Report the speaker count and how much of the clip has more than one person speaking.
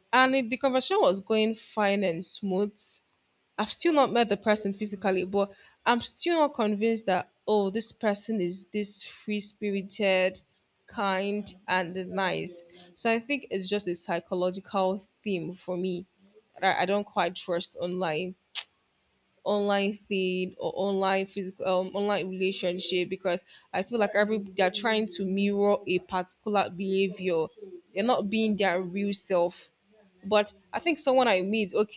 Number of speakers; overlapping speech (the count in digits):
1, no overlap